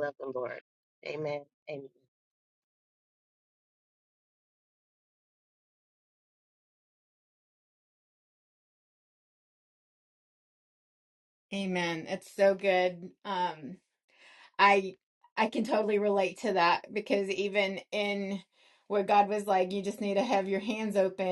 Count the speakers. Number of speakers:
two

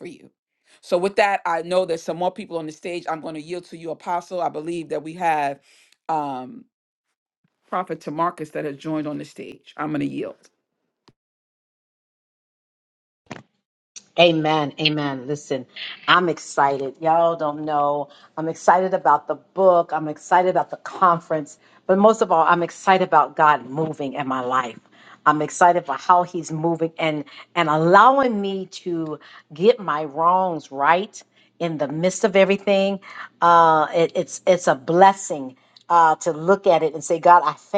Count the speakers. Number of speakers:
two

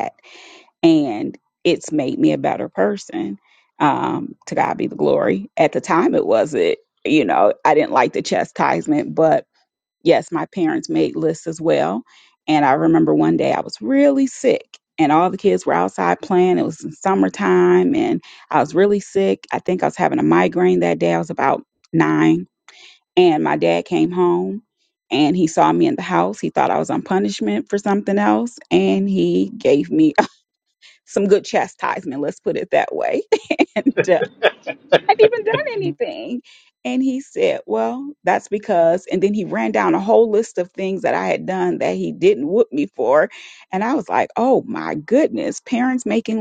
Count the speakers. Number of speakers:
one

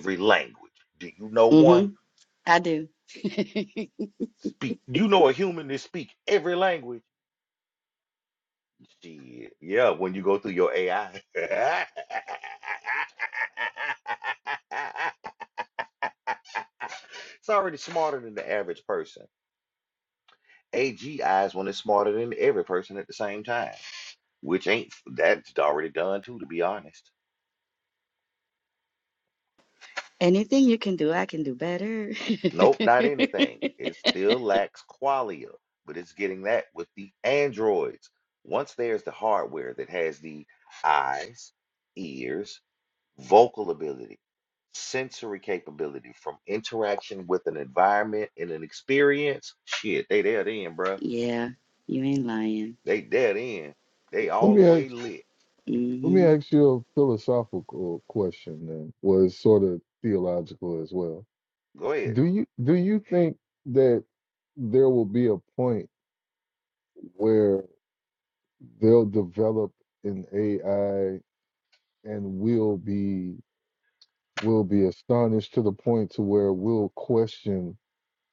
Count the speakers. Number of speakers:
three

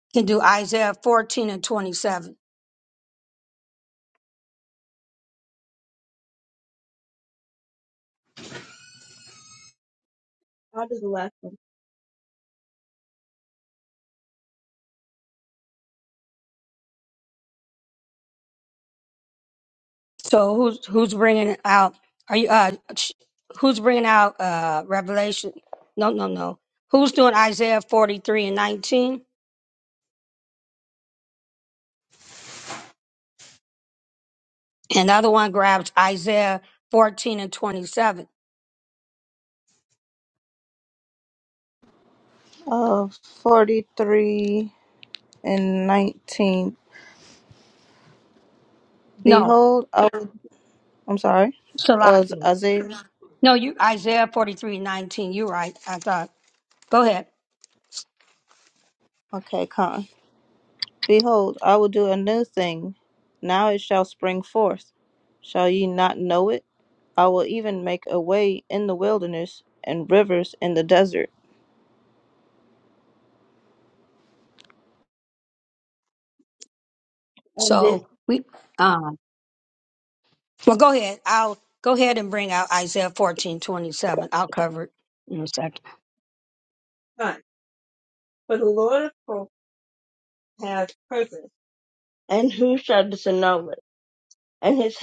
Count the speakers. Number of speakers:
three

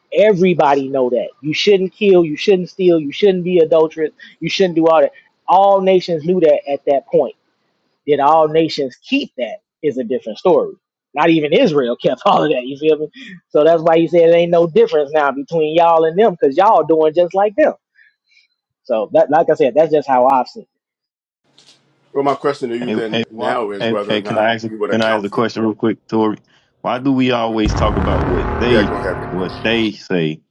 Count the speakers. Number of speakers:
three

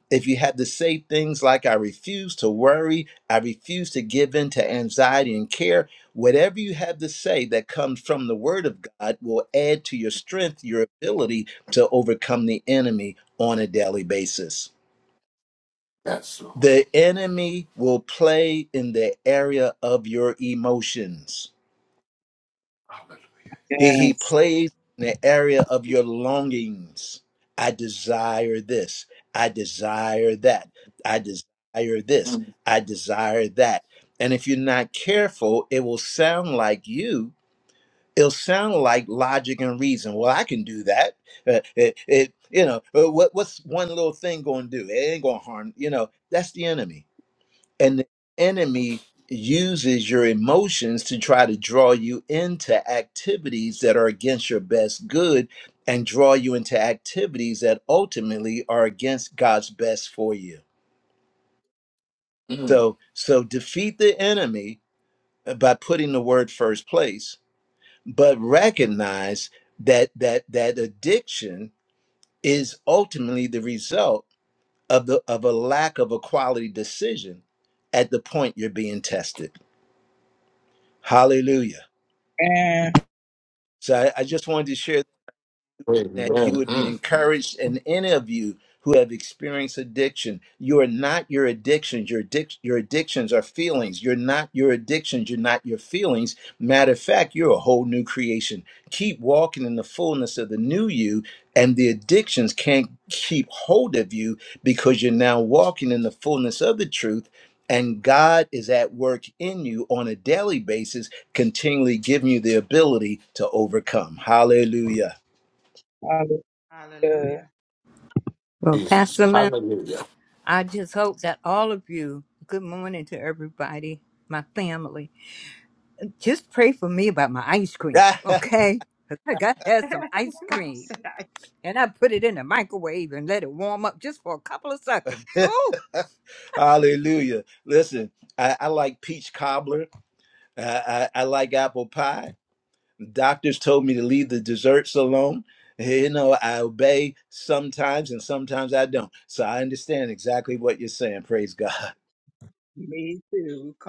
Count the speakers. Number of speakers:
five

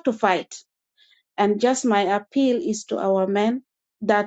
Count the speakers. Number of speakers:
one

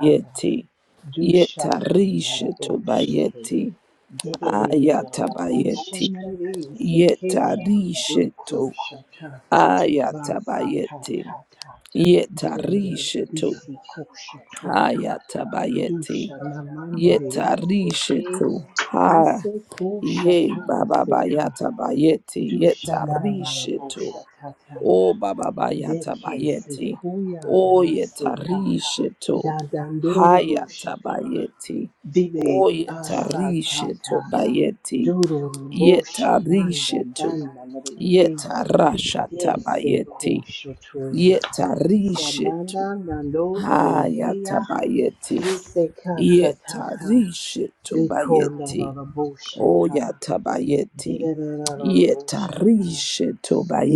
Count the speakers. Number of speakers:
two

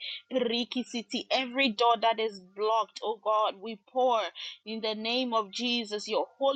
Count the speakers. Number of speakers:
one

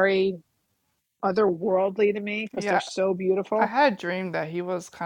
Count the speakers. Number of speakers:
two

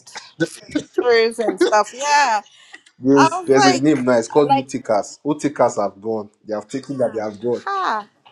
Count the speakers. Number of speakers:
two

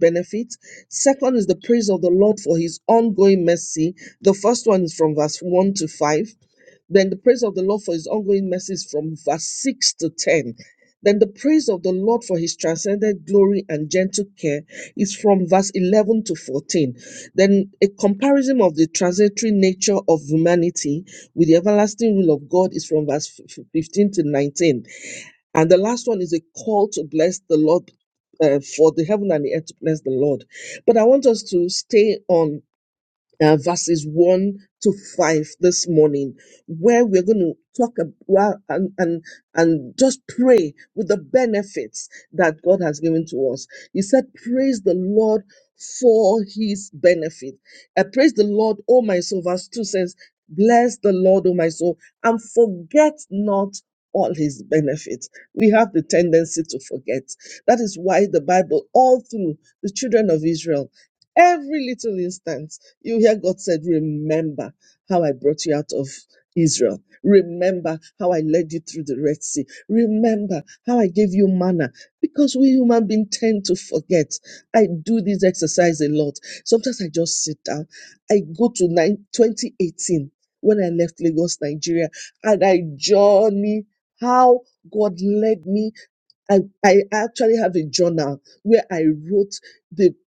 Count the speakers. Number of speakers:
one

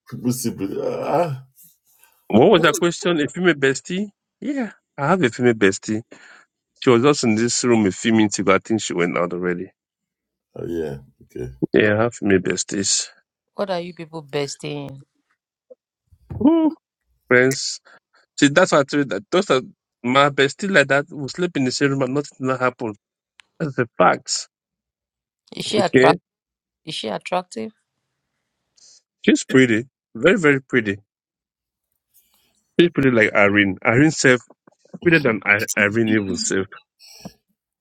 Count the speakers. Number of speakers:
three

